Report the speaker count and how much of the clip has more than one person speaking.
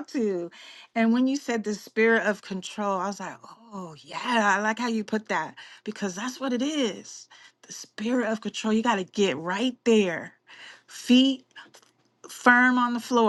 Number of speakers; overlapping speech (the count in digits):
1, no overlap